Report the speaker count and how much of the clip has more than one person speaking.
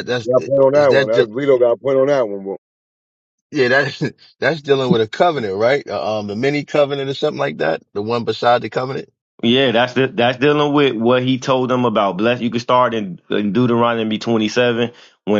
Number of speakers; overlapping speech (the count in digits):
3, about 3%